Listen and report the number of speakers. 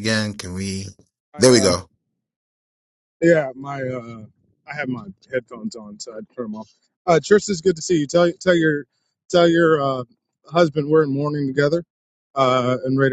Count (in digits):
2